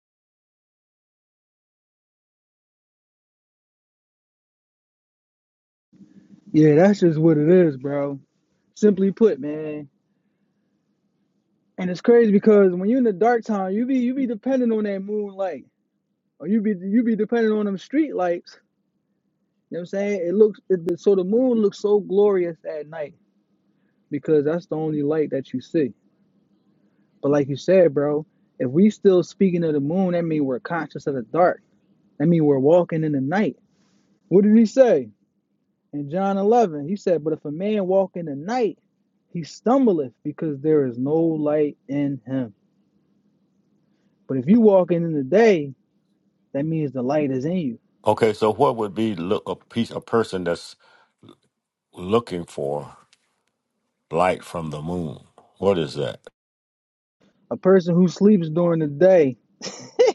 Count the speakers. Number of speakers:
two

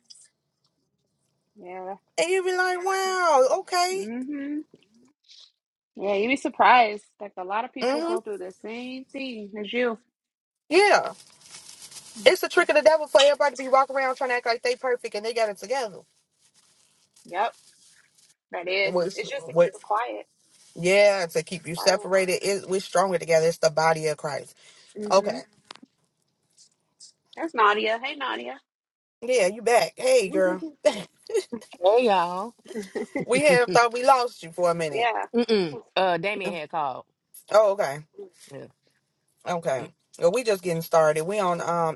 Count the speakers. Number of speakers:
three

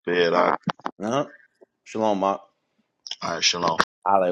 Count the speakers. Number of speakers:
two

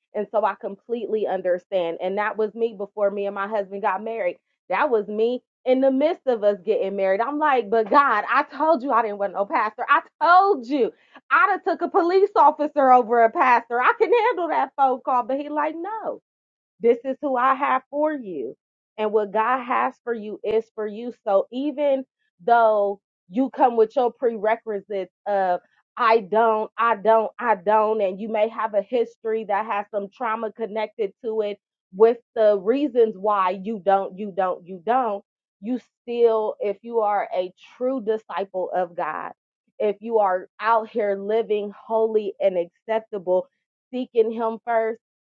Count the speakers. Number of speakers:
one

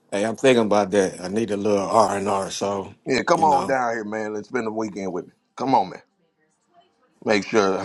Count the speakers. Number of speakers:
two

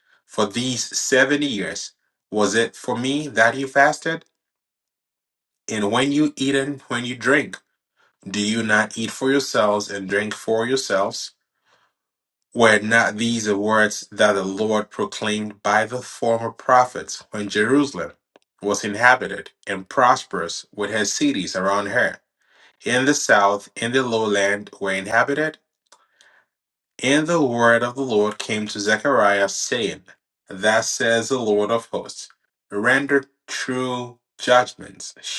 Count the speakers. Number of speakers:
one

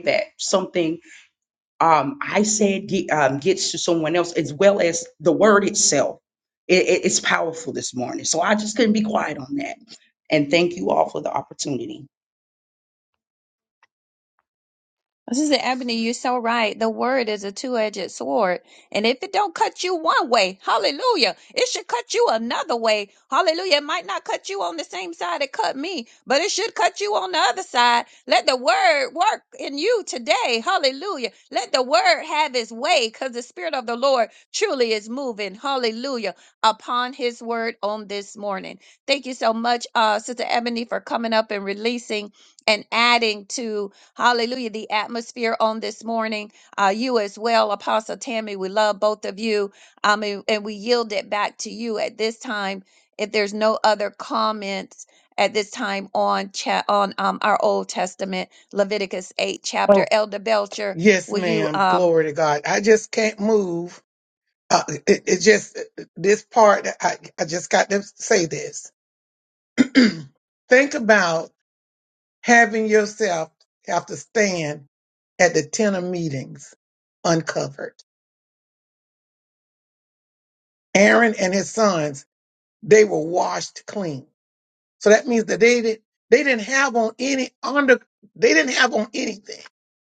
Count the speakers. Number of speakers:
three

